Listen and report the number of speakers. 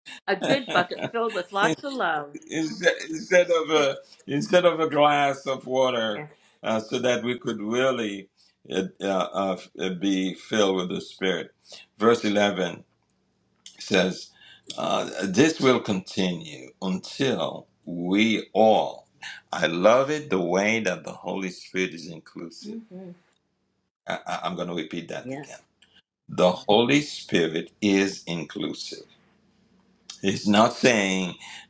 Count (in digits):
2